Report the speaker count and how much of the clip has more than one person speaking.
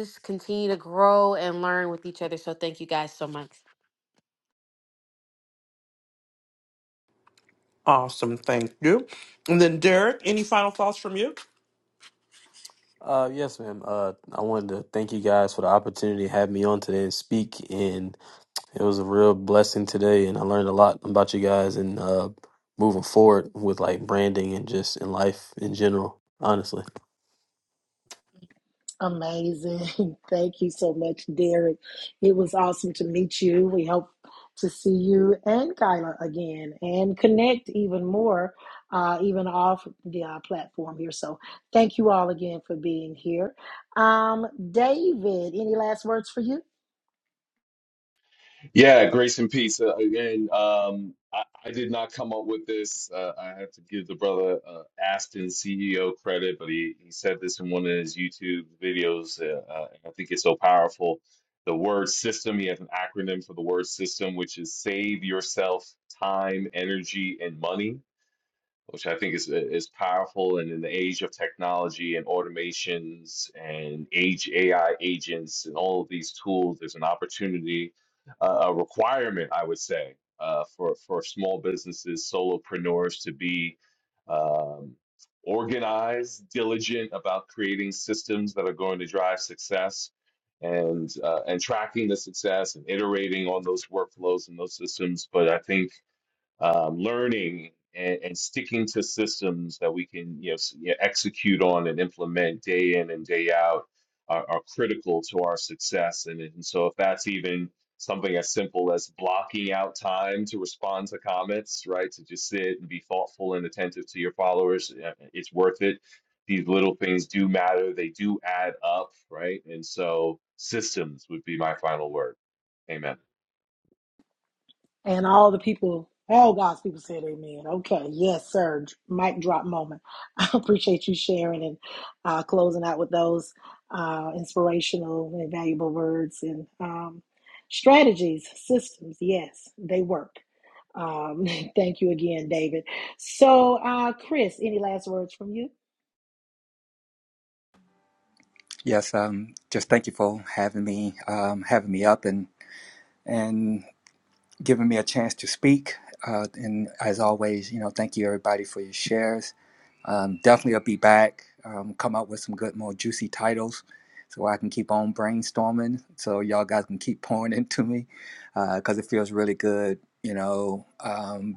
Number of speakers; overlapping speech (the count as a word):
six, no overlap